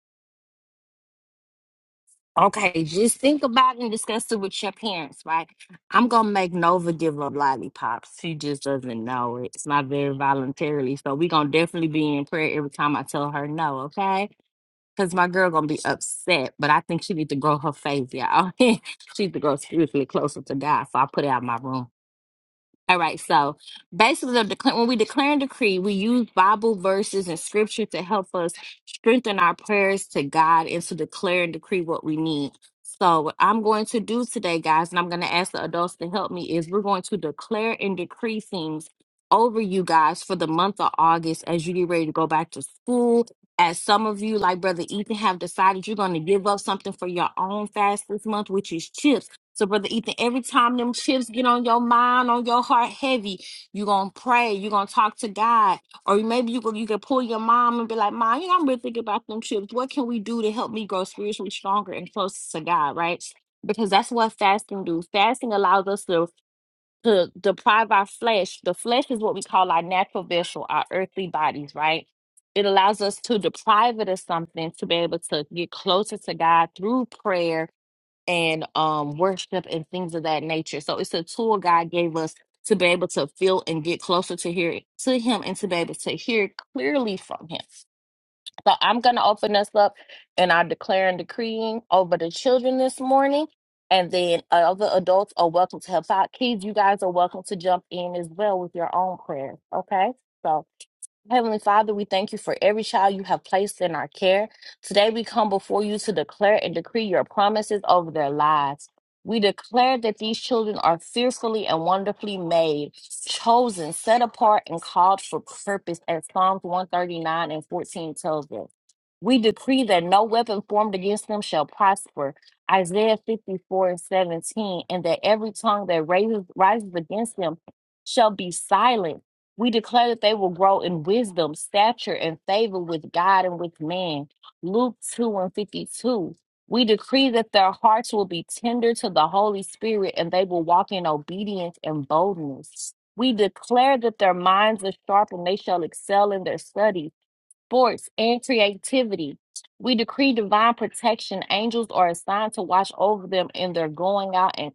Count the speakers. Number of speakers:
1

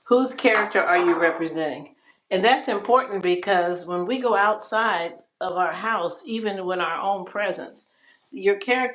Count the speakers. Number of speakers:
1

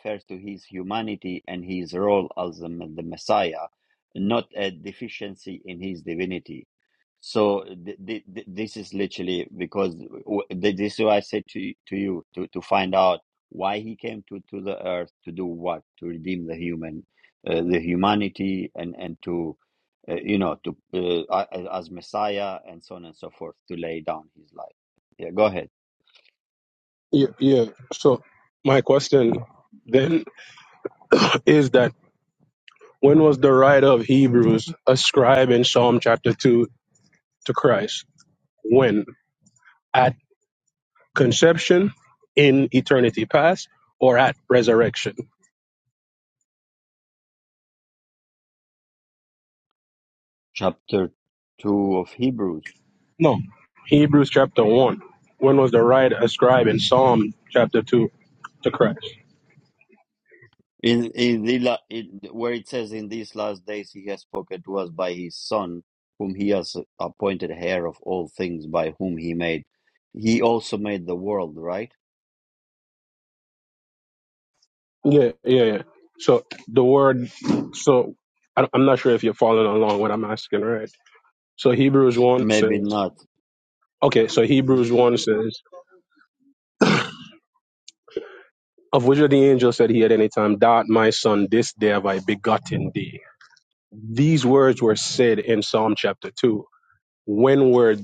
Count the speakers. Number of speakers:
2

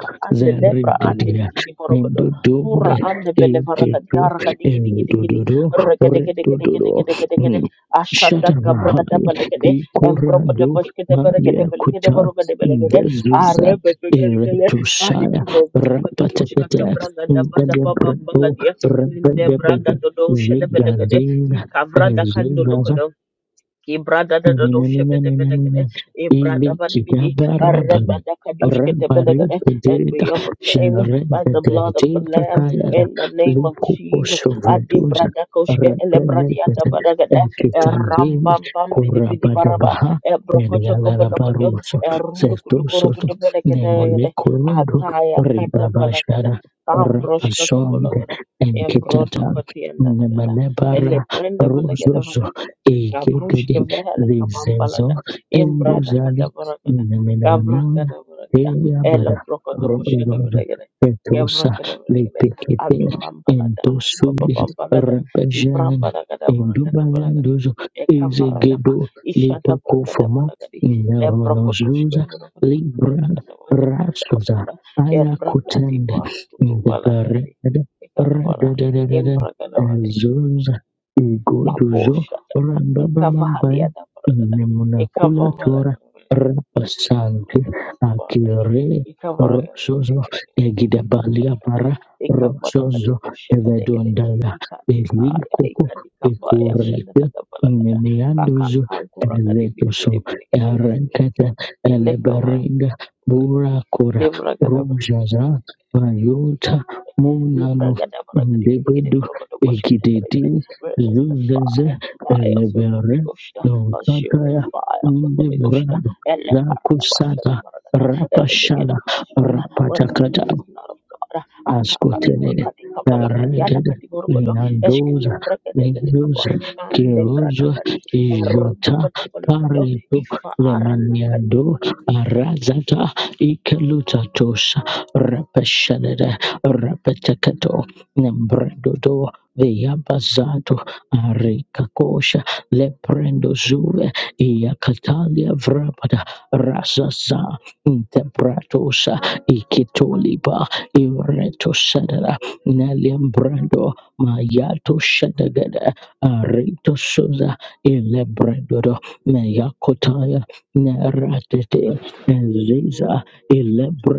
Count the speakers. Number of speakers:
2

